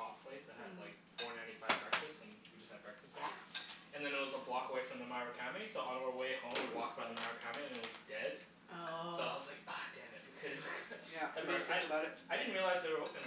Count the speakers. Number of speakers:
three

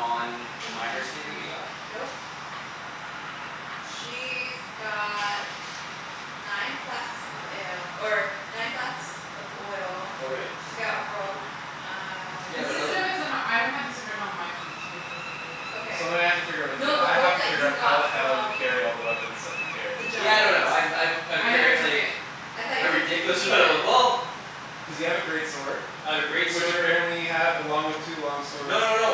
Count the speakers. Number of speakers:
four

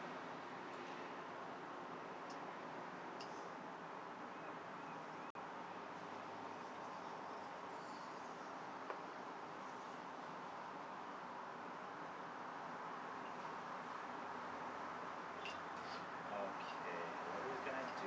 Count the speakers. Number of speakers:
one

